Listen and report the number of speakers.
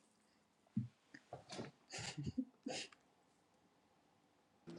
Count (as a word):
zero